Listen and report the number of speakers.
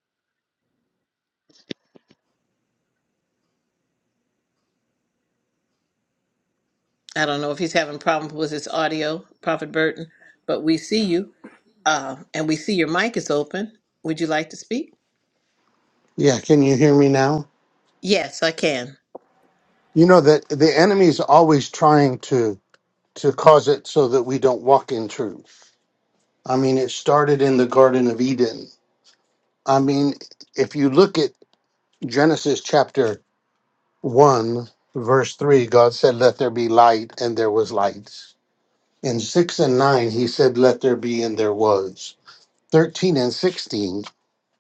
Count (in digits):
2